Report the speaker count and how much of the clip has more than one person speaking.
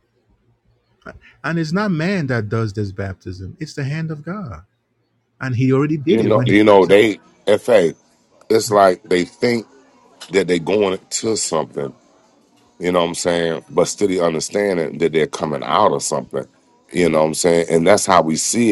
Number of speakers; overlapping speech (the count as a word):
two, about 3%